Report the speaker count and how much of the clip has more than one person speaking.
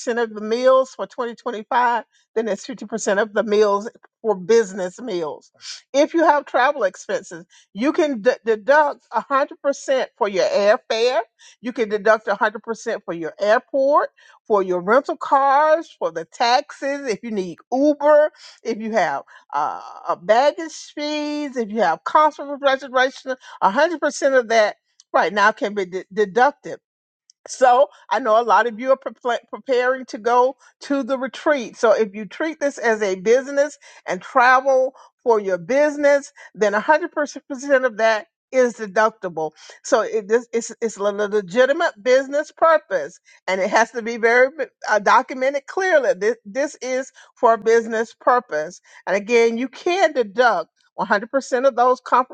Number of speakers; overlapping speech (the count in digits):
1, no overlap